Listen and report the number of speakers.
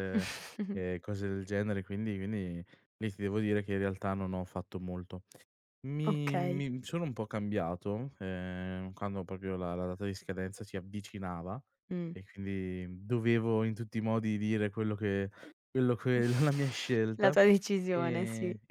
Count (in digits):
2